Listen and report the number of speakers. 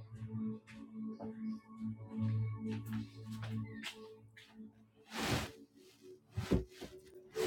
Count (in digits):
0